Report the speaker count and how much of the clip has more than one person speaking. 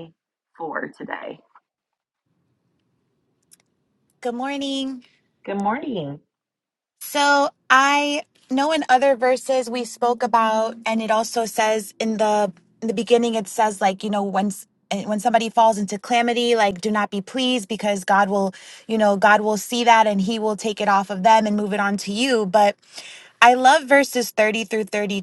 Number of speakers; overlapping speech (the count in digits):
2, no overlap